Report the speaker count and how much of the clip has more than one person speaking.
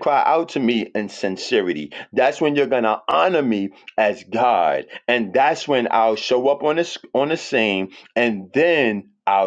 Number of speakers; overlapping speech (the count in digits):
1, no overlap